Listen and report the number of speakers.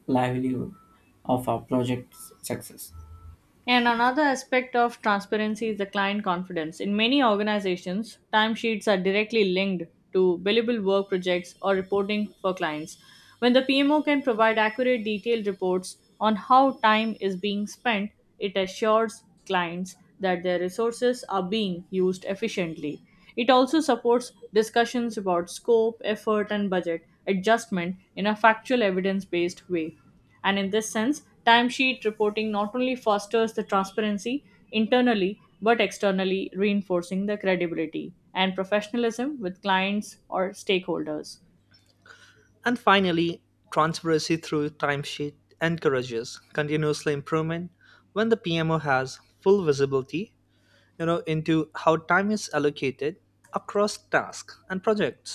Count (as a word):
three